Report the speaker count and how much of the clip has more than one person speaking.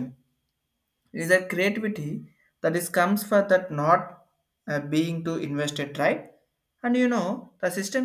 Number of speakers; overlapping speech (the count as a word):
one, no overlap